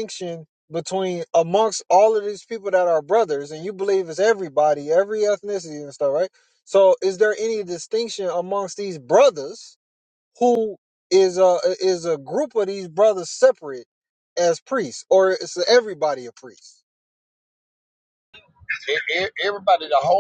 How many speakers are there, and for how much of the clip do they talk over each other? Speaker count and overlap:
2, no overlap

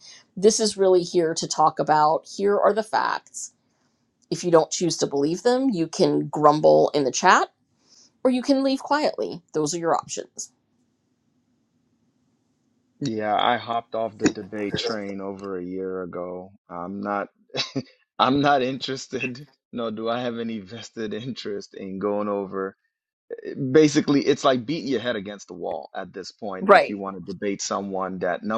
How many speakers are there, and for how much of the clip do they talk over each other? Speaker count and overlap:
2, about 1%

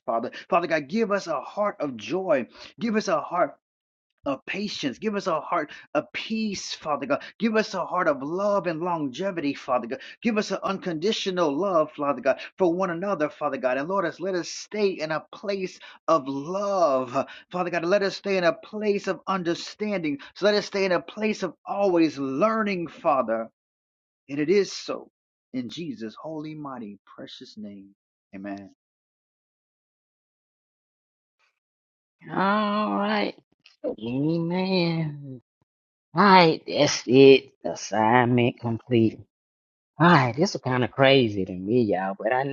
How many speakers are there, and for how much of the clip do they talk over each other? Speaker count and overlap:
2, no overlap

